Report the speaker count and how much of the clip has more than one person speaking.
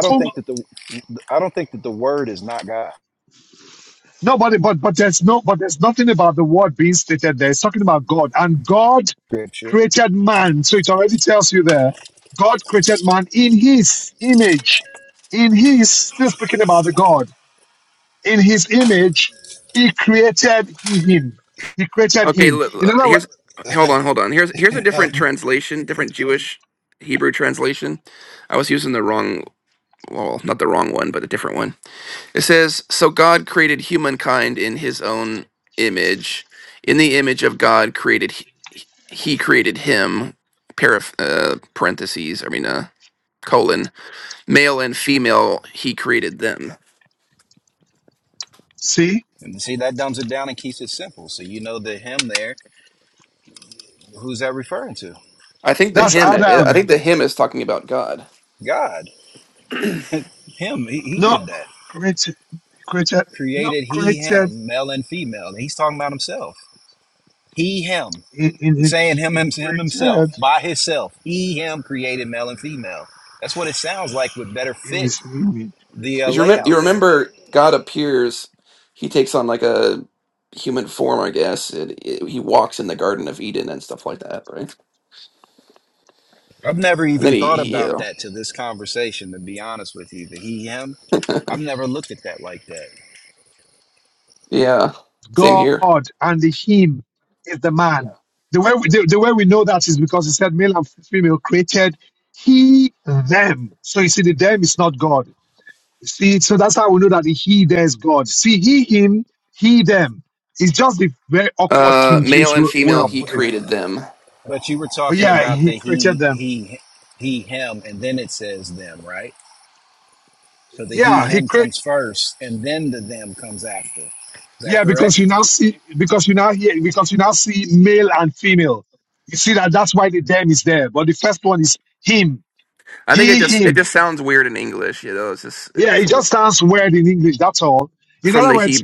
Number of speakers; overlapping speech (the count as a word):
three, about 9%